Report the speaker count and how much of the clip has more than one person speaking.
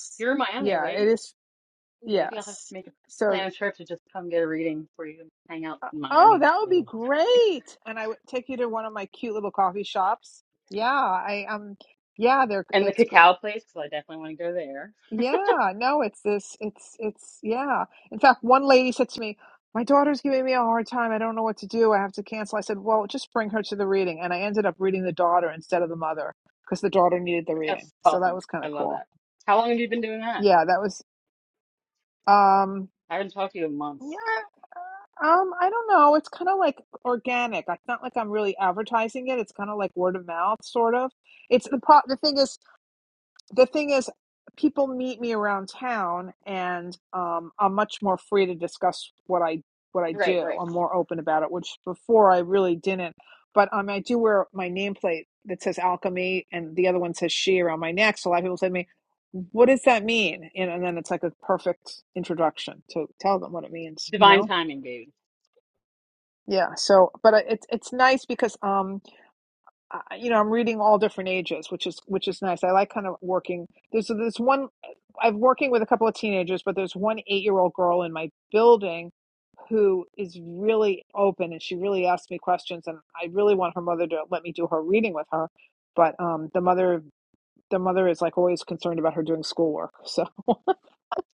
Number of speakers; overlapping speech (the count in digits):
2, about 4%